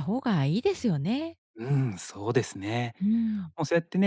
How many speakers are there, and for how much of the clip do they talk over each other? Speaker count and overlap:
two, no overlap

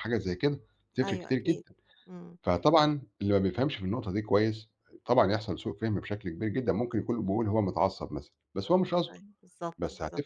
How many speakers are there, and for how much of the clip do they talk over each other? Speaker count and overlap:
two, about 11%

